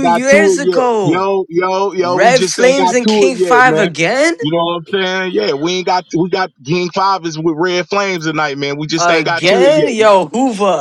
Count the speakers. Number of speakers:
2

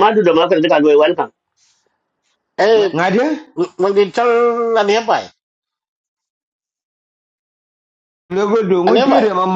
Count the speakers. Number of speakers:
3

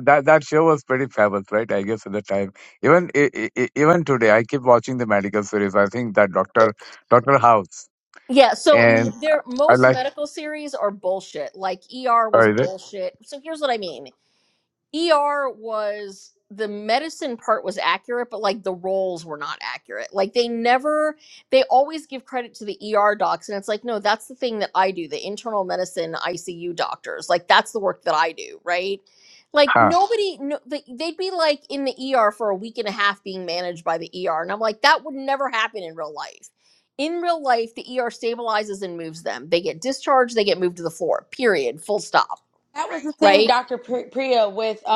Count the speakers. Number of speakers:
3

